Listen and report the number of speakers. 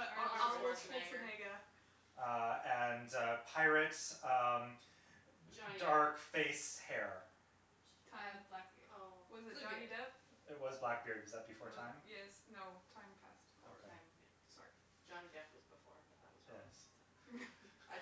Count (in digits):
4